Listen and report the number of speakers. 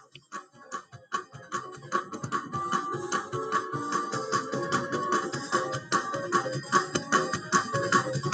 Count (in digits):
0